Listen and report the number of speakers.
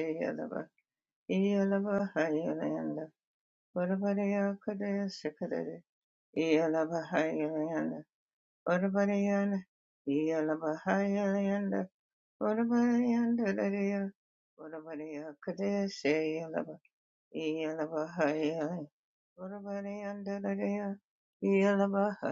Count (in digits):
1